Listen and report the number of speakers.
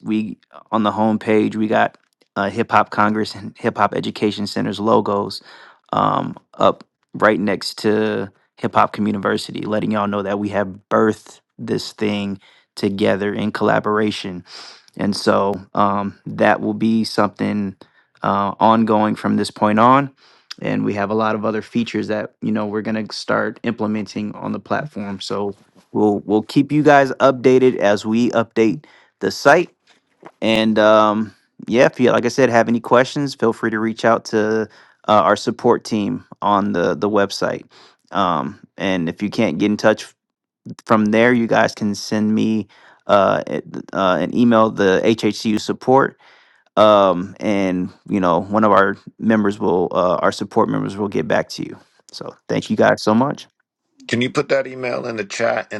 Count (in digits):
2